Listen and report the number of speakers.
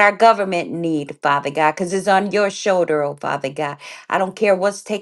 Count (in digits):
1